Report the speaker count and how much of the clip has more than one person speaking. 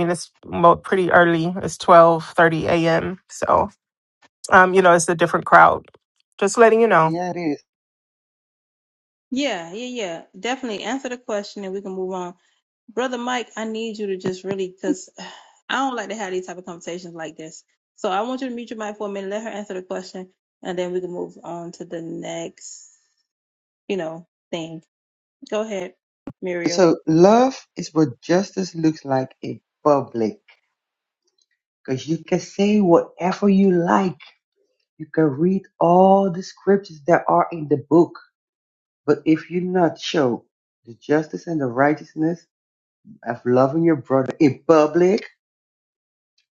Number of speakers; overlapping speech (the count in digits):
3, about 1%